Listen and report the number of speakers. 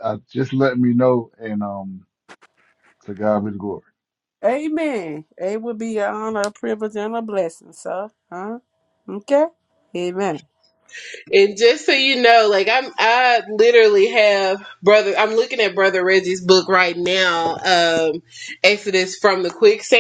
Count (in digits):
3